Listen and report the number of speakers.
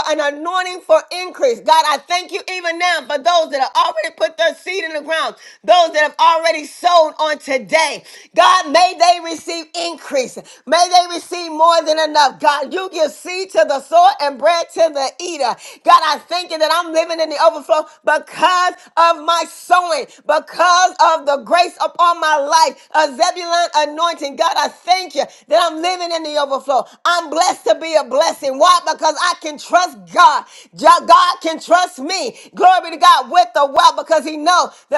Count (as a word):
one